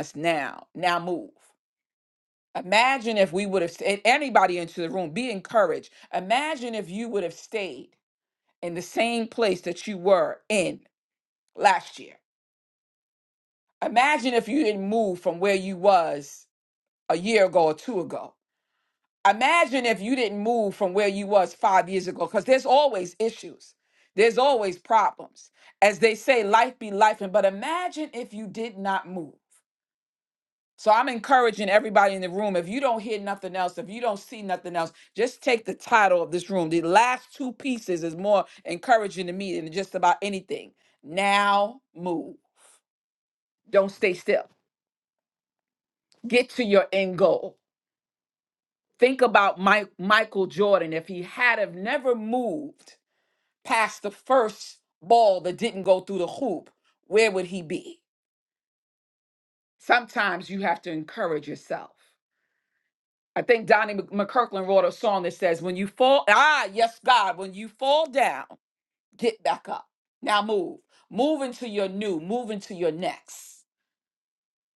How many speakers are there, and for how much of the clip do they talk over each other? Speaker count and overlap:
1, no overlap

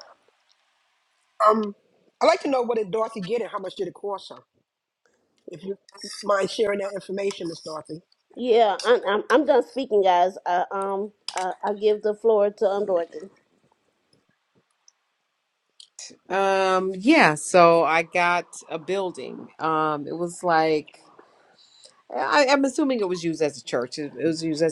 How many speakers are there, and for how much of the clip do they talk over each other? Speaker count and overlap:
3, no overlap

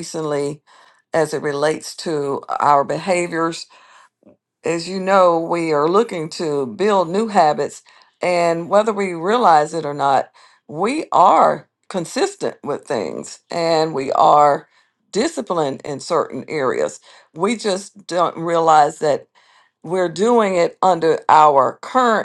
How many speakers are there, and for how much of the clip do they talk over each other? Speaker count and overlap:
1, no overlap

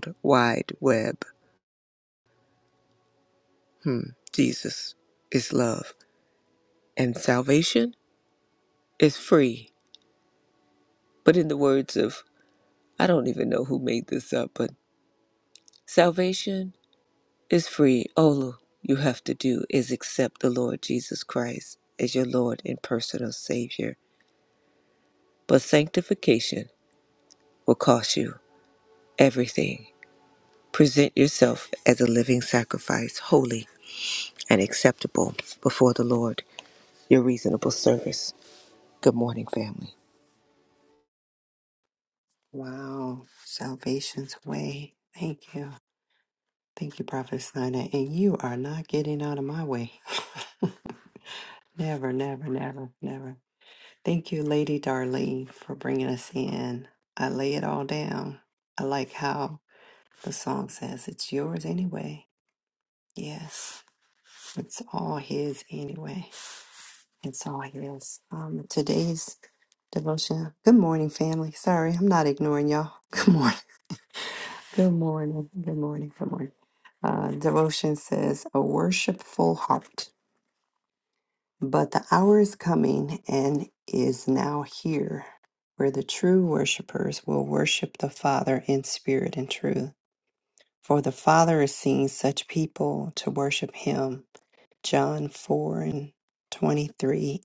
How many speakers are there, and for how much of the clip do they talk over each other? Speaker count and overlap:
2, no overlap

